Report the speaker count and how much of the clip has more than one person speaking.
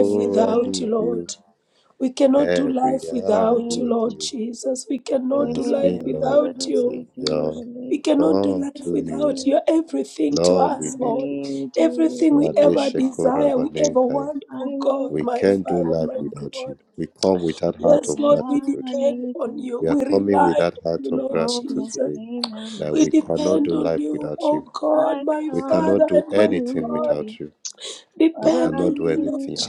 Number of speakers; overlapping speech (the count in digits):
3, about 77%